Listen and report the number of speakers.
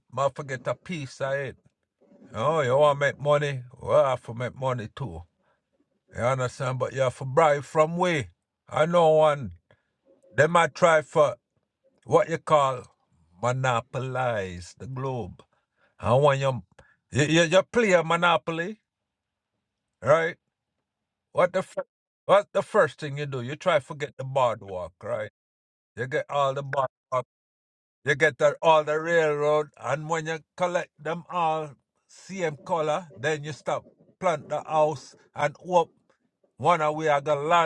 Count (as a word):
one